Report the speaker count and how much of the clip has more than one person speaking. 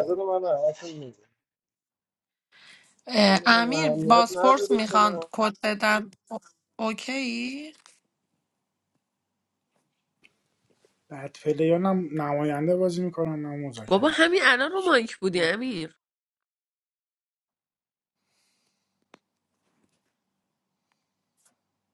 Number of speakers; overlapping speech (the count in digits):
4, about 11%